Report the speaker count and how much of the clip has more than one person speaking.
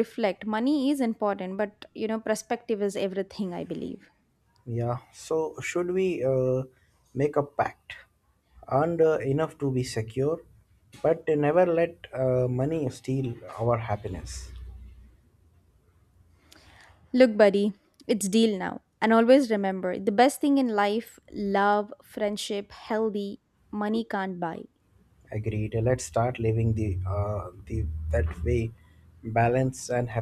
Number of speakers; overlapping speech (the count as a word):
two, no overlap